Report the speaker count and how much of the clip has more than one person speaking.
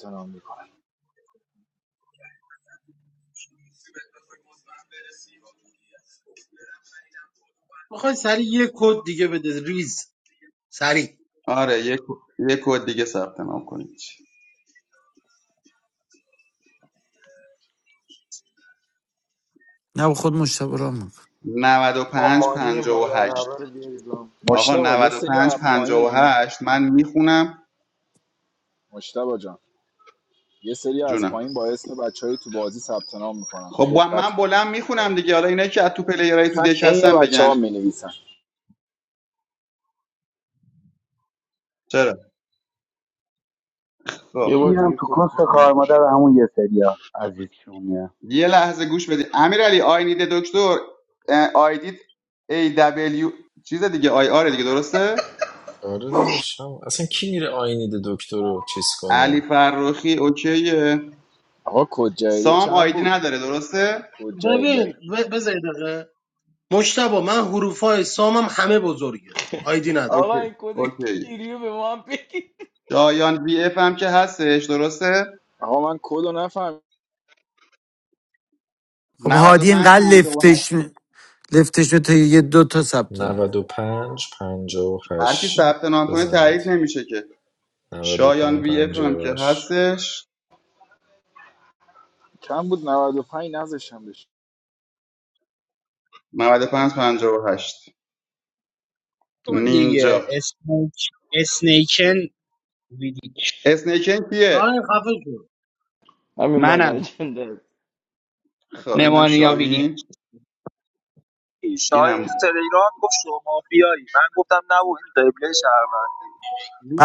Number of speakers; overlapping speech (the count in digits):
9, about 13%